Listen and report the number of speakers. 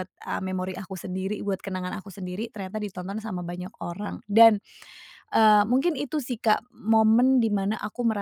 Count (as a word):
one